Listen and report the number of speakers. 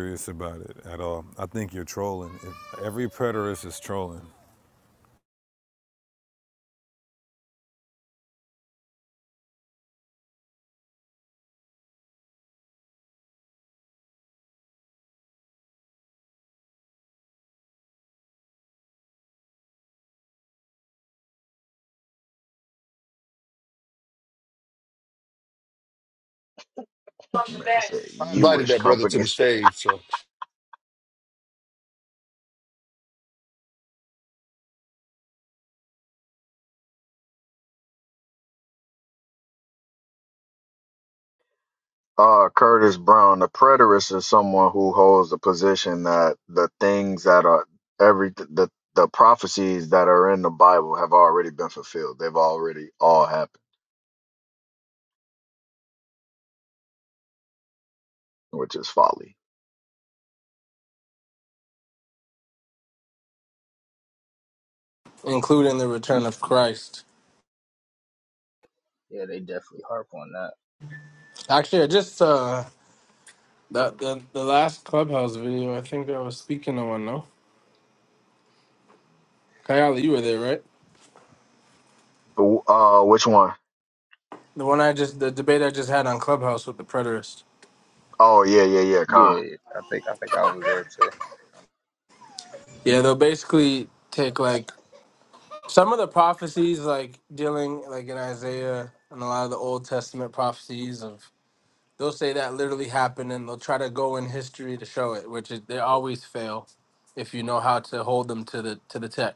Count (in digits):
5